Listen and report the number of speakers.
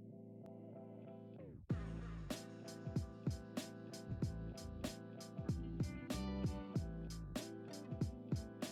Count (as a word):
zero